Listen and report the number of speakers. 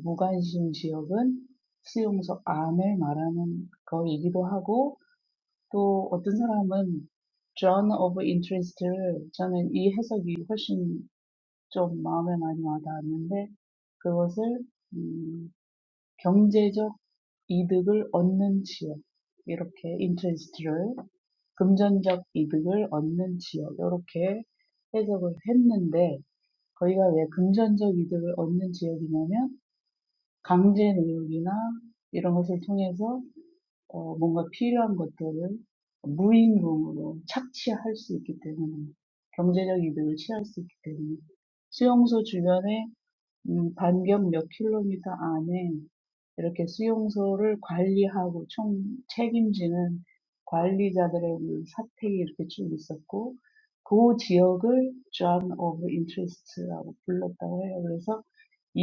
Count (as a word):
one